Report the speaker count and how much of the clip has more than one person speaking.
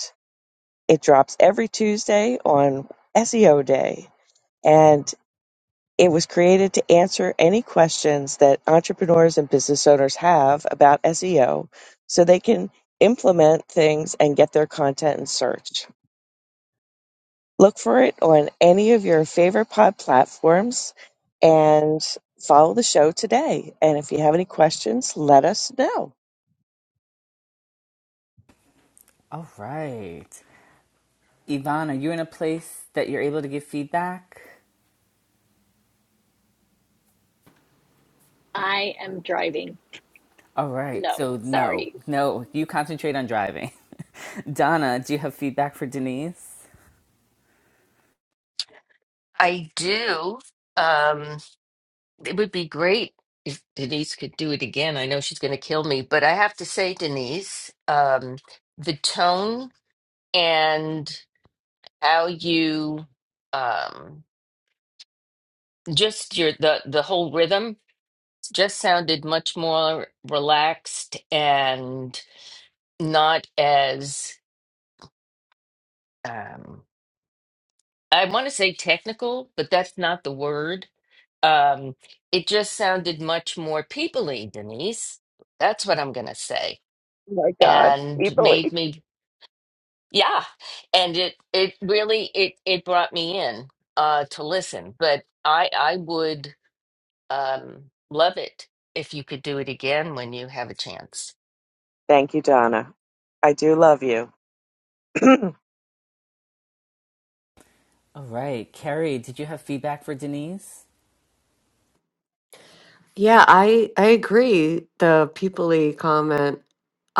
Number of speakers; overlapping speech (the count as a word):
five, about 2%